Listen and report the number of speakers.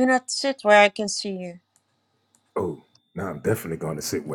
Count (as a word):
two